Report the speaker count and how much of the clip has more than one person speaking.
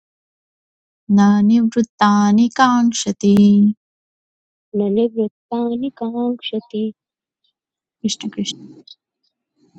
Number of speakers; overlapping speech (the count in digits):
2, no overlap